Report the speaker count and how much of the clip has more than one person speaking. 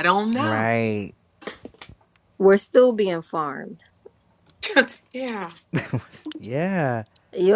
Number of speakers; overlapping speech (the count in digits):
3, about 4%